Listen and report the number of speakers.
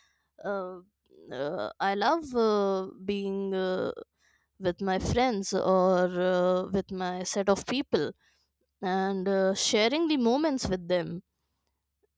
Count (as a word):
one